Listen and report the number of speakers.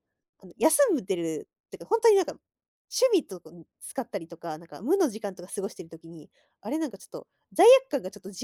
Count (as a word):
one